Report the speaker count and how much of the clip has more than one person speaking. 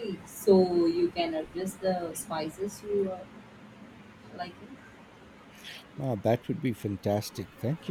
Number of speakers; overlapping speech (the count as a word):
two, no overlap